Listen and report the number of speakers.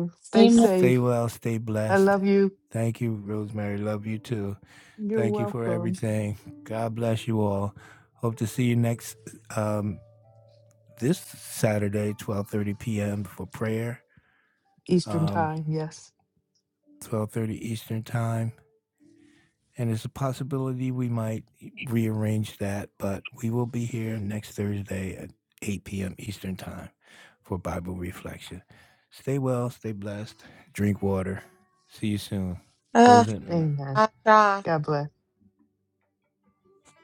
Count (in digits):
3